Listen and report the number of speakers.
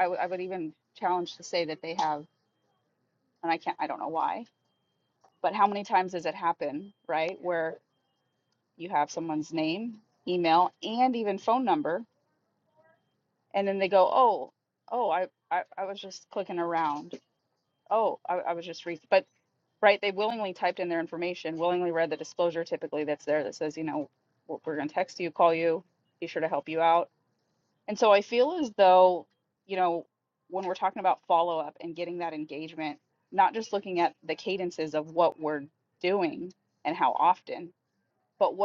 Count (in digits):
1